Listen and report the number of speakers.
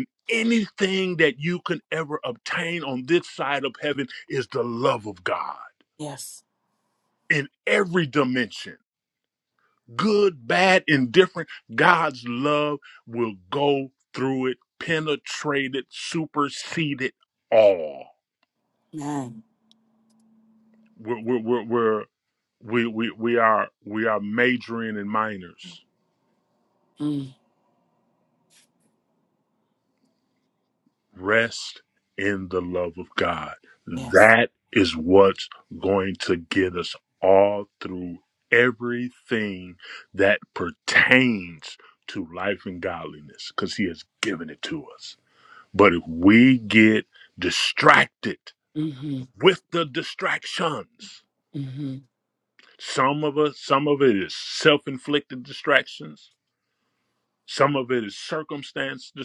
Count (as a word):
two